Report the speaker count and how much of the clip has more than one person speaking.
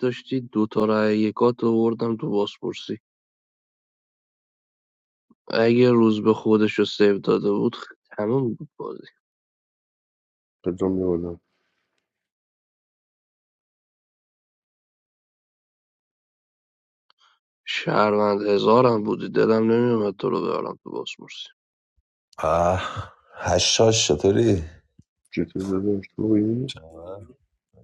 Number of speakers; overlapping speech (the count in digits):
3, no overlap